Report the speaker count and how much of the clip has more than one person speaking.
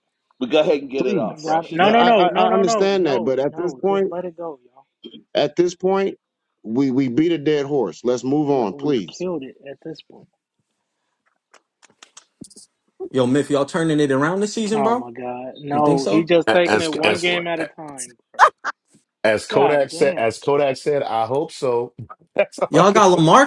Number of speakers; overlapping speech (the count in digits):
5, about 28%